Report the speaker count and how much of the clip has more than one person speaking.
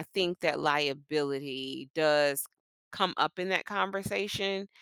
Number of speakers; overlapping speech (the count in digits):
1, no overlap